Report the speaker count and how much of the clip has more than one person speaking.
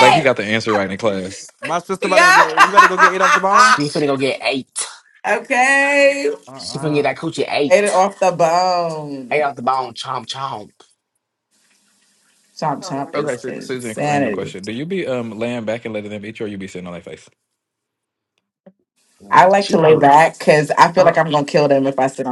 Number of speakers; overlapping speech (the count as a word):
four, about 21%